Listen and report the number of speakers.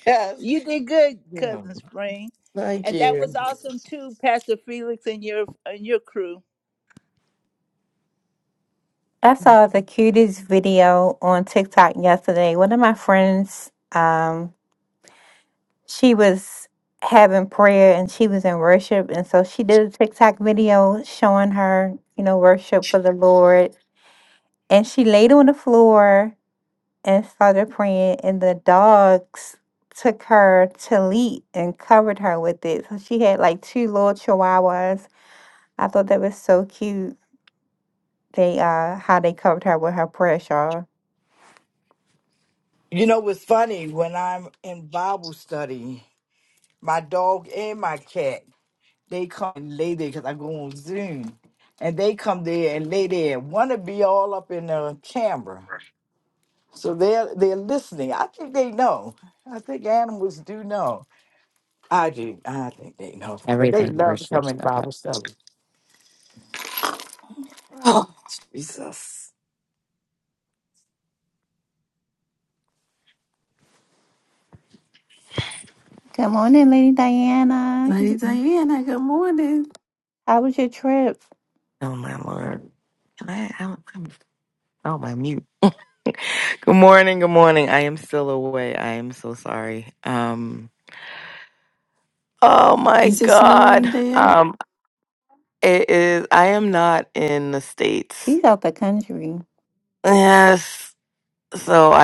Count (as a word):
five